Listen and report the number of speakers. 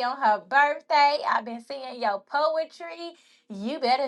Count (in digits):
1